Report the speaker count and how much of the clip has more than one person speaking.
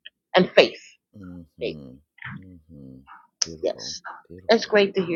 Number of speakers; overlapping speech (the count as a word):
two, about 12%